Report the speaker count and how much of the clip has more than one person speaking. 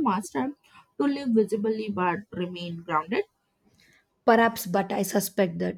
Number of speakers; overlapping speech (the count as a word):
two, no overlap